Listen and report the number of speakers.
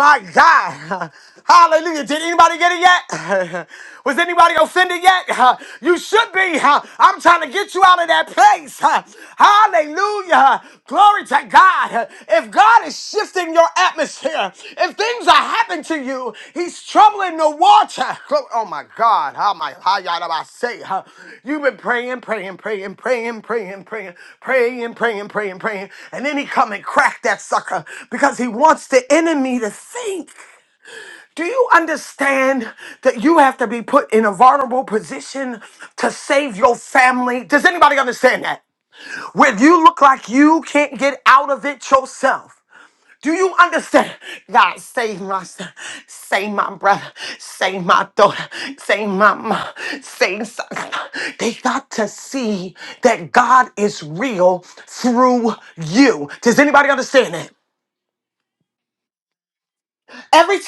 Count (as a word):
one